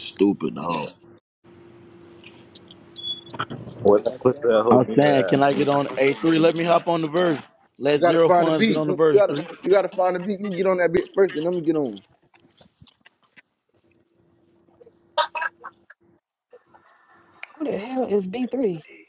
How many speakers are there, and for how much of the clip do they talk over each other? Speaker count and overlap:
four, about 13%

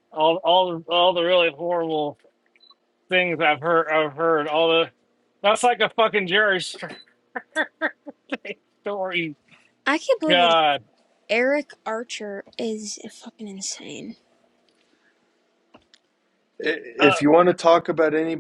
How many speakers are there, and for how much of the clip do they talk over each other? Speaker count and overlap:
three, about 3%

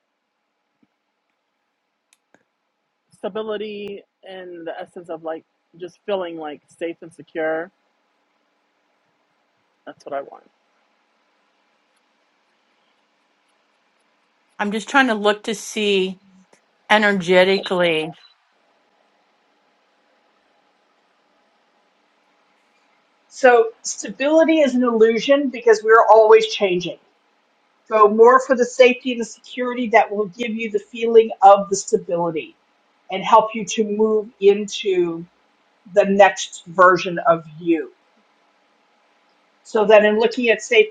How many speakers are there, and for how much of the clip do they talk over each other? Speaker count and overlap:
three, no overlap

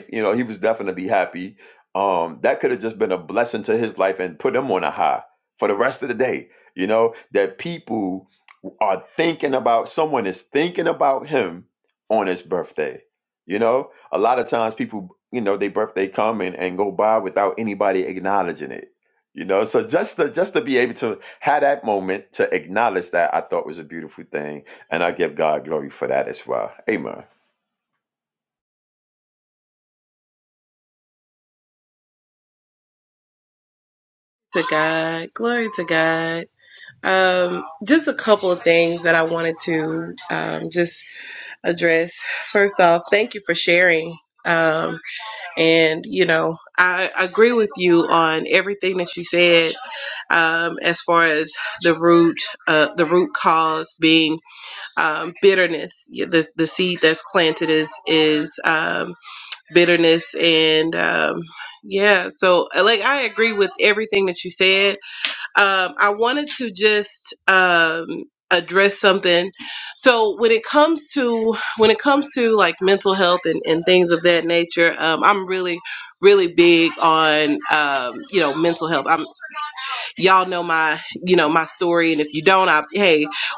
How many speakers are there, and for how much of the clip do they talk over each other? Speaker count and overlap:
two, no overlap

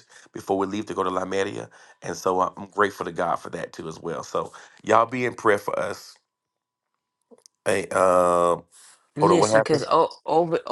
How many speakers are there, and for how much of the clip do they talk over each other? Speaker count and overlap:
two, about 6%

